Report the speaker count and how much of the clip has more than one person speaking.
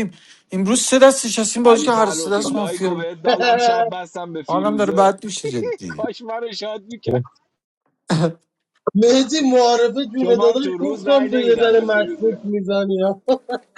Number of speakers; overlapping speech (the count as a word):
three, about 35%